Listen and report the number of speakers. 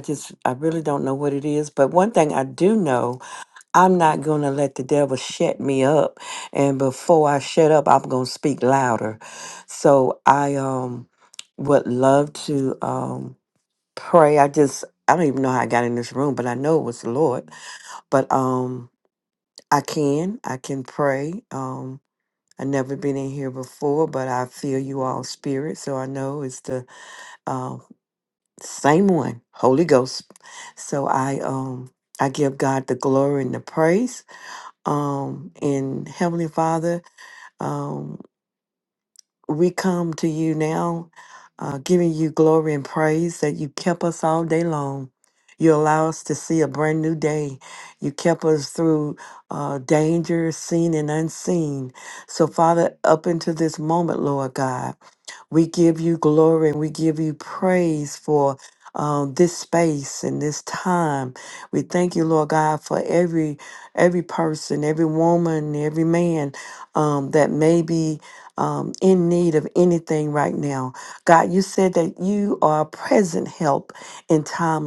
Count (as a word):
one